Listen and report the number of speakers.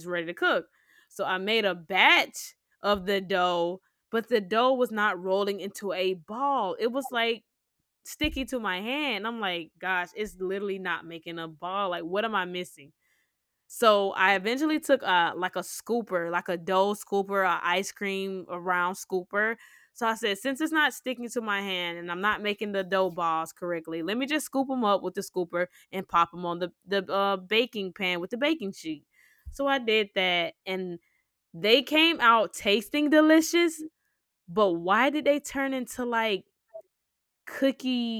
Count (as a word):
one